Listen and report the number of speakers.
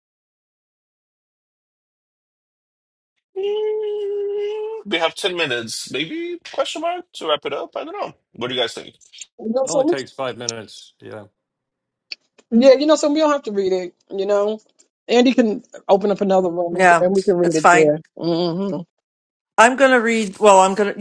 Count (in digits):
4